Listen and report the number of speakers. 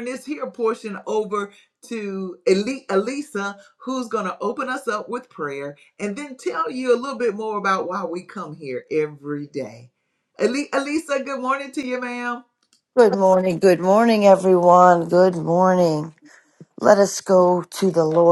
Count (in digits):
2